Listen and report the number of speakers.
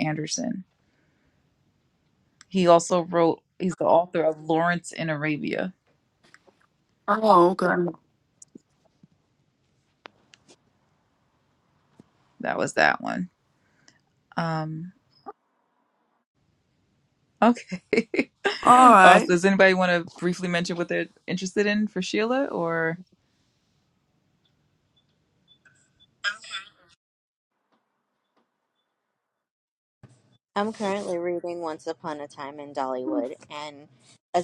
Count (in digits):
3